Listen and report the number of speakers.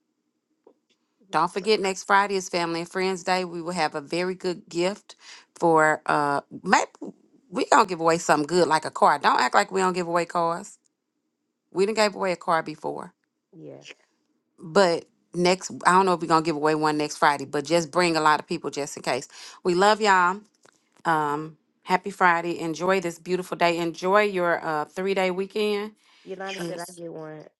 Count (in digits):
2